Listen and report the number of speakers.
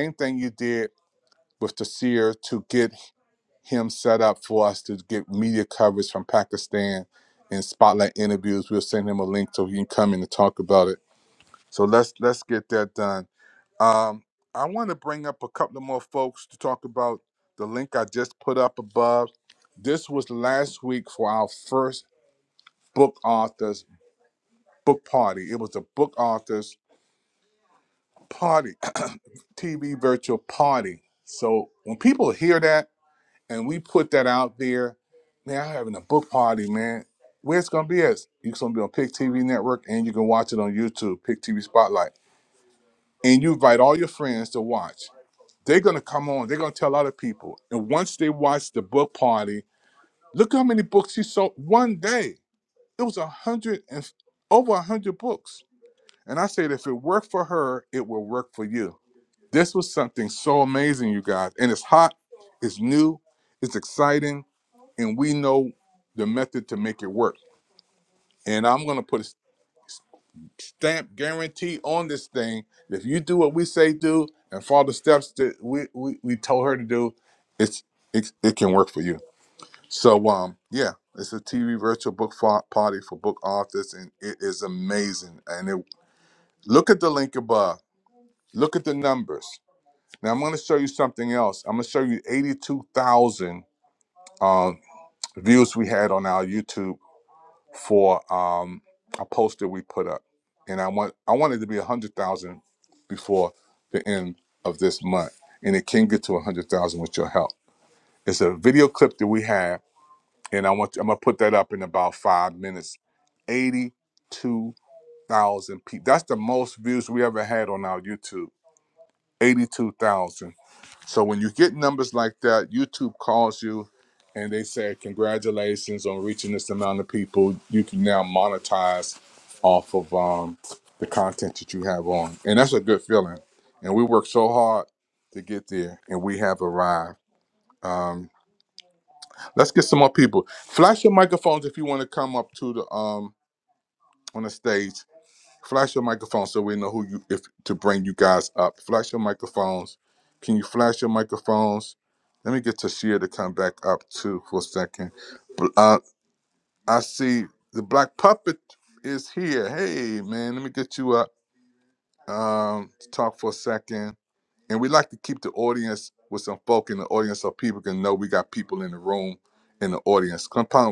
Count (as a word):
one